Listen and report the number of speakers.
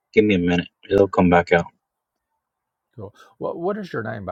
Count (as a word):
two